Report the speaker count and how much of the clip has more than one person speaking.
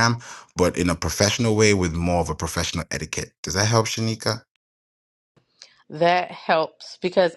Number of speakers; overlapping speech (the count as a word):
two, no overlap